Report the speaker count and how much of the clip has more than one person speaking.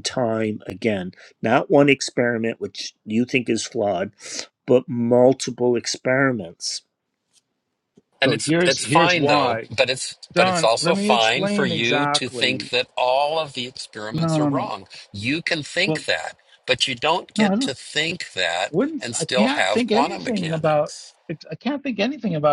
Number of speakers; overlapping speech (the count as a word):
three, about 29%